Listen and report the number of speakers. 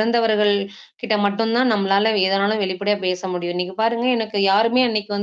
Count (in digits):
1